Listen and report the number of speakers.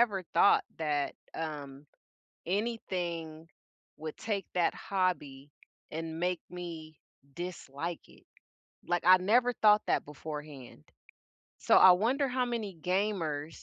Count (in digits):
1